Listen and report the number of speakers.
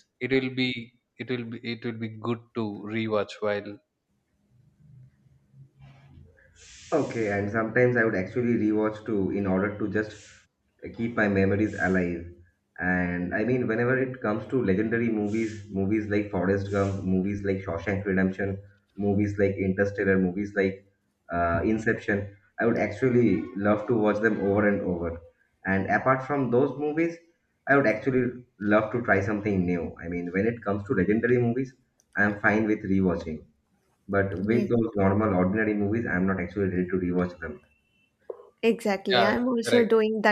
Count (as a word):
three